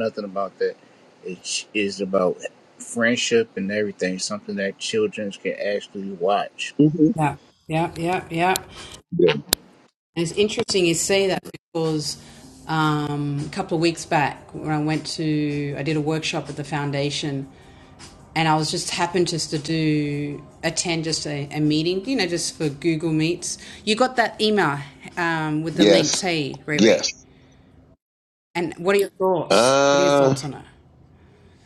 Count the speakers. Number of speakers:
3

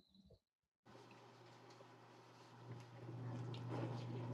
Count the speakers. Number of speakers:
0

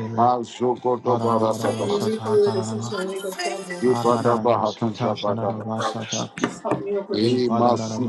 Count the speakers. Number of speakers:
3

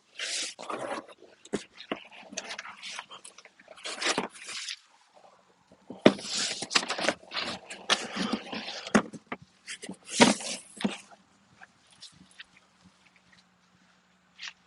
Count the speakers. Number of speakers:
0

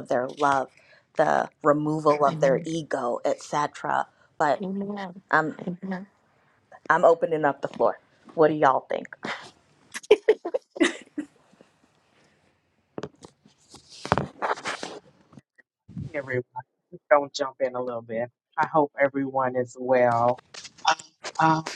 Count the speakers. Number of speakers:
3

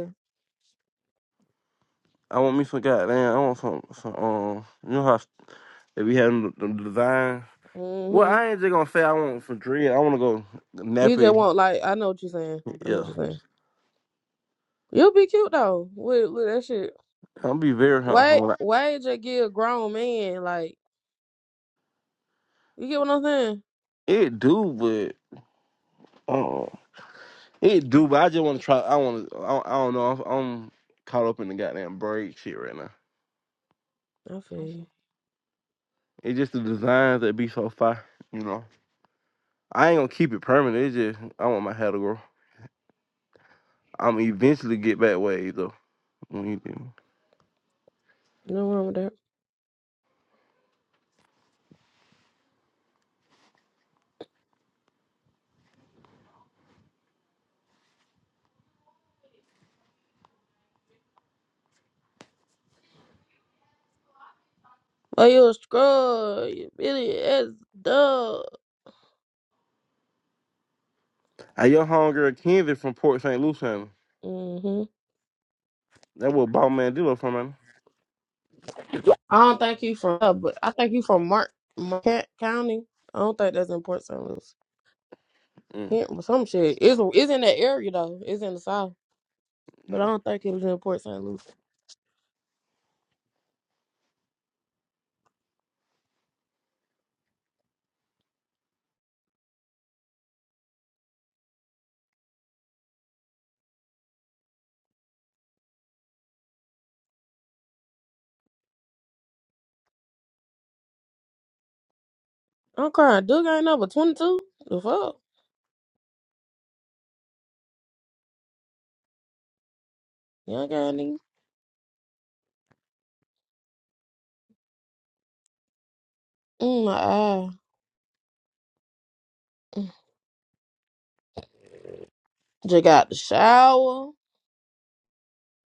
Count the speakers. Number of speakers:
2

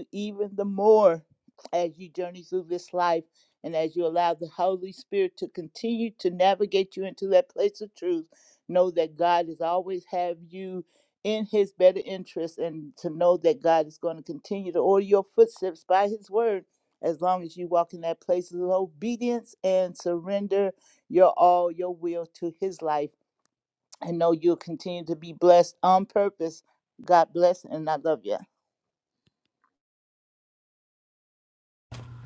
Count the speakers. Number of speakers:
1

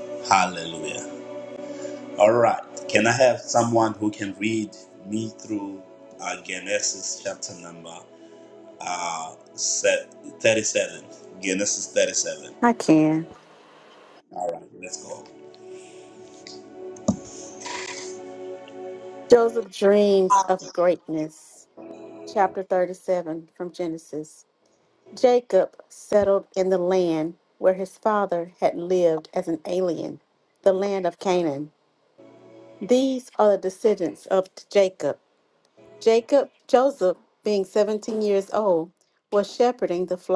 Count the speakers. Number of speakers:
2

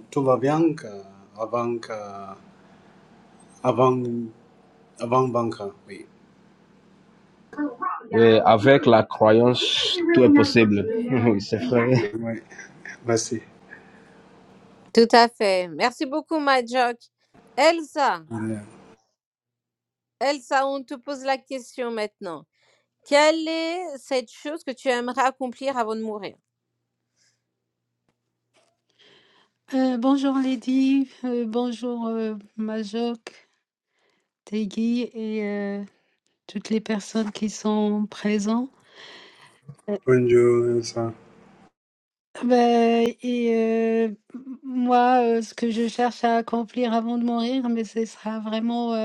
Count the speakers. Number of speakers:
4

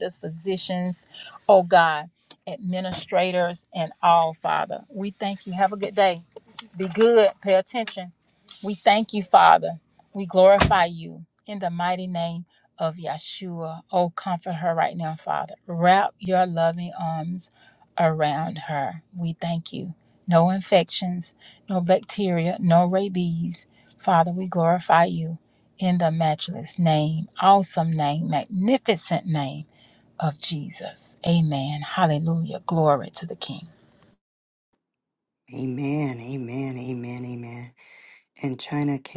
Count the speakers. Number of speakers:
2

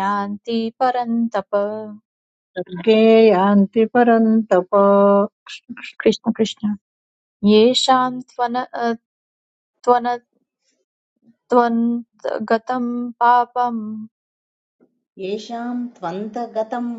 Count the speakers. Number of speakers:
3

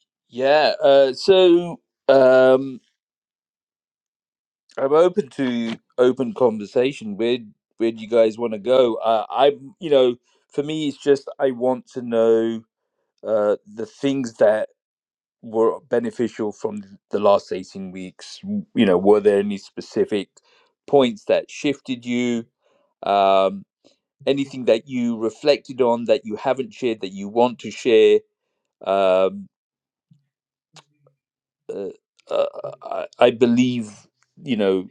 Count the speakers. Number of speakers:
1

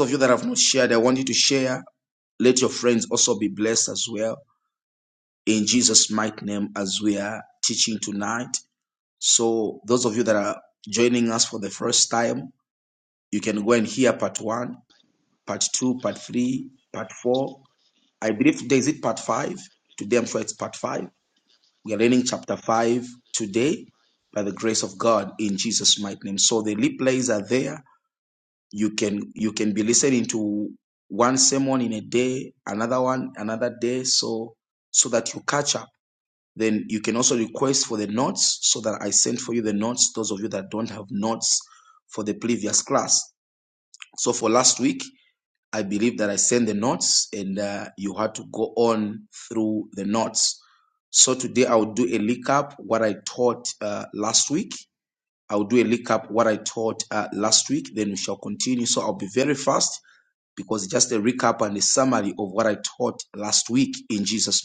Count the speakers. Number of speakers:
1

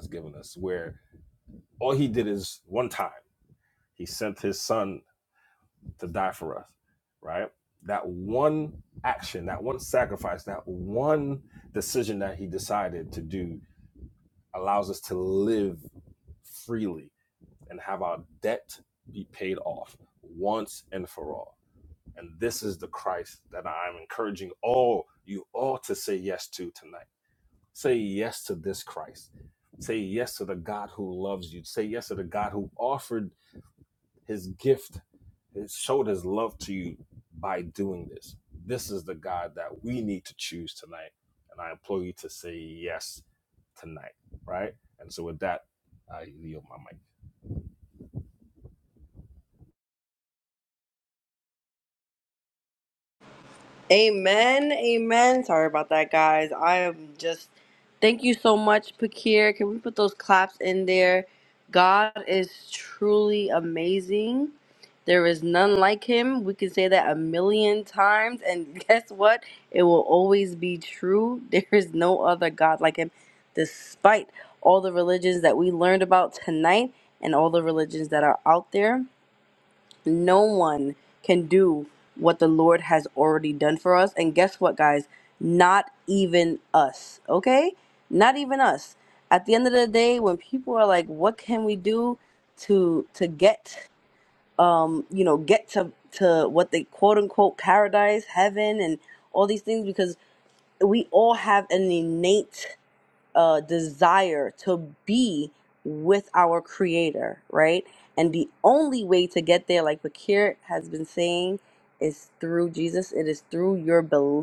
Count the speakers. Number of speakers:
2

